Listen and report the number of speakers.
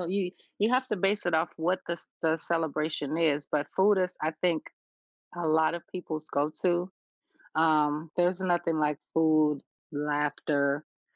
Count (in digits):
1